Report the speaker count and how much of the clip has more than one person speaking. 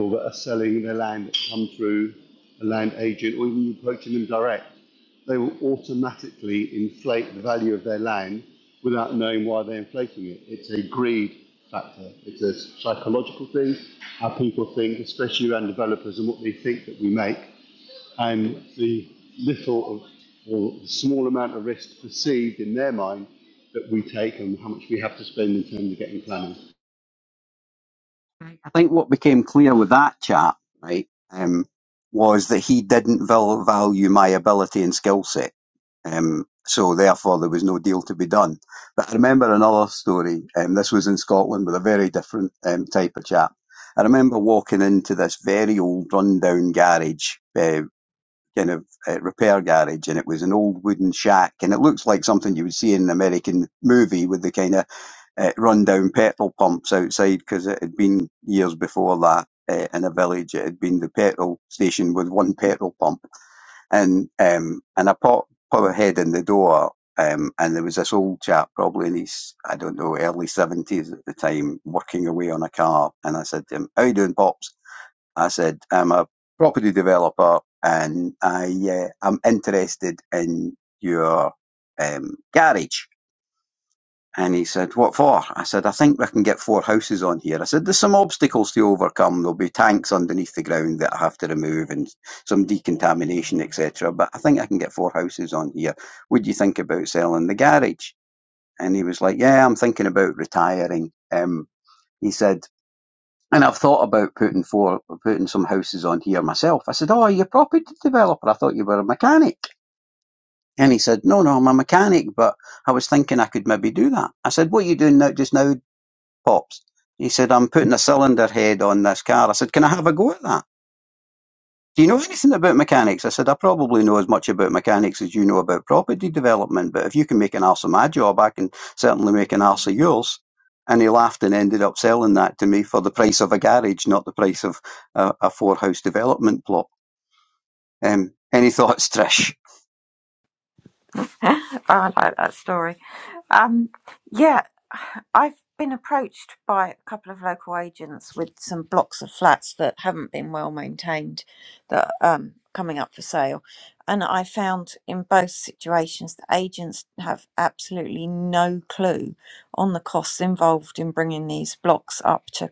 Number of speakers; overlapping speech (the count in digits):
3, no overlap